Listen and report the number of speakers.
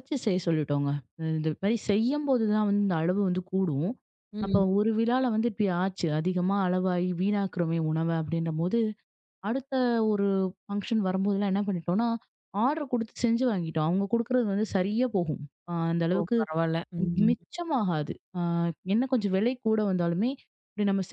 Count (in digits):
2